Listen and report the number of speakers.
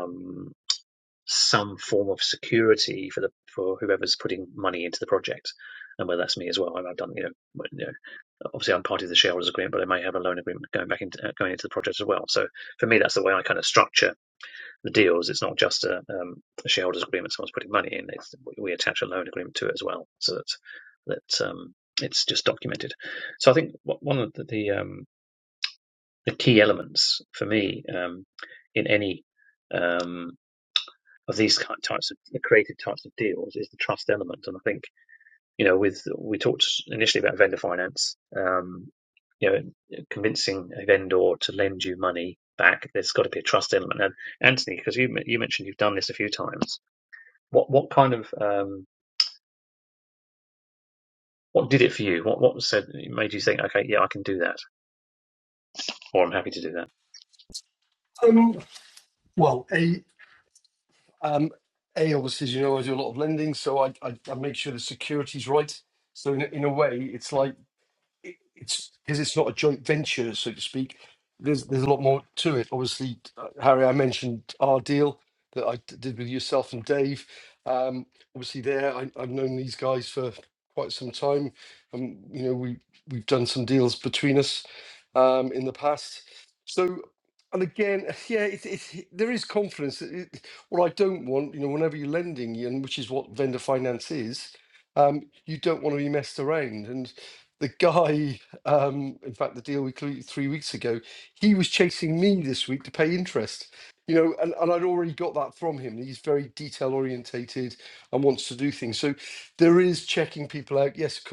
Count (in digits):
2